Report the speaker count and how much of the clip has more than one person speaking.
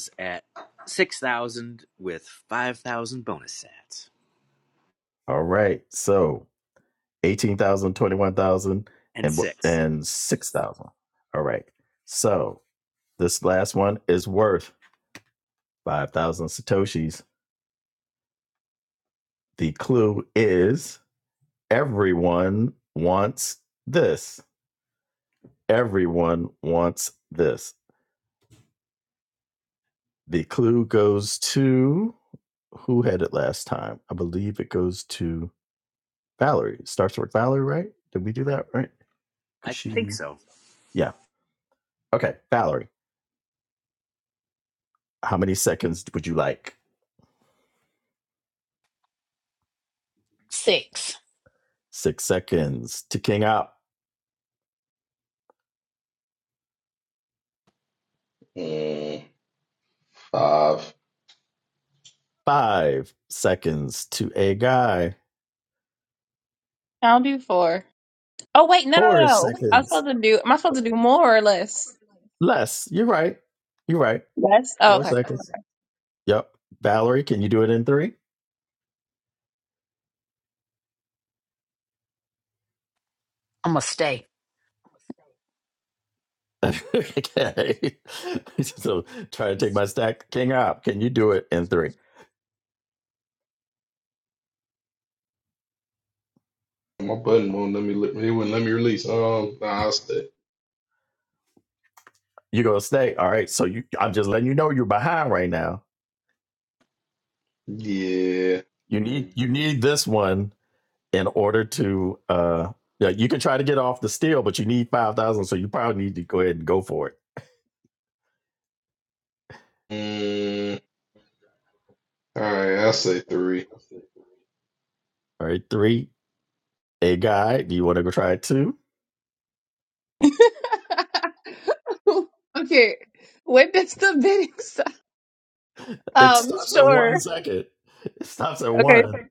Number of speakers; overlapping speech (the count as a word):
five, about 2%